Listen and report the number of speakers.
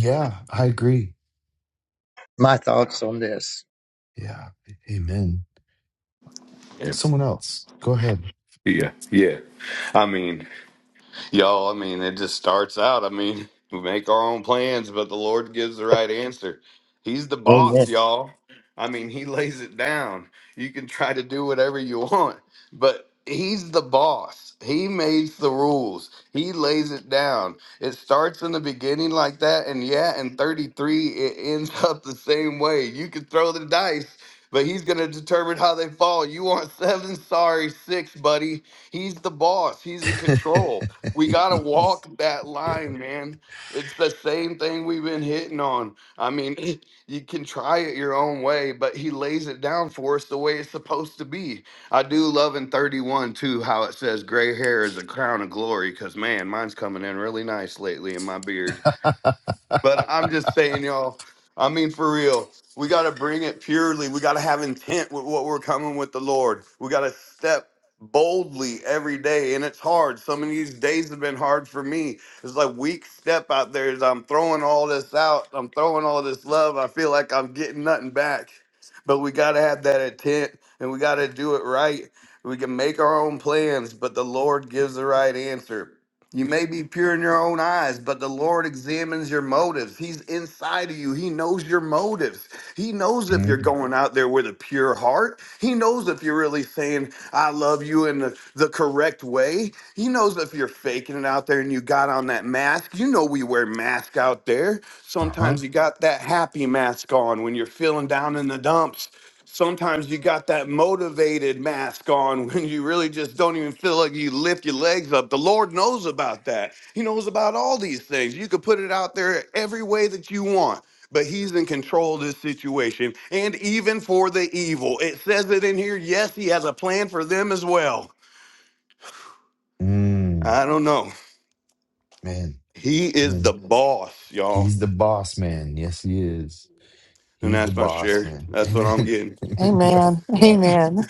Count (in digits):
4